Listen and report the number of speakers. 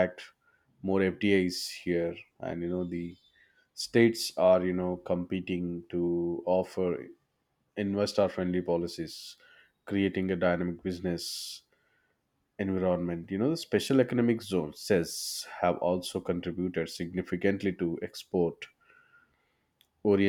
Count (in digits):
1